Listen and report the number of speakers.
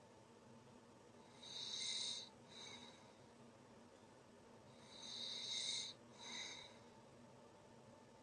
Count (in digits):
0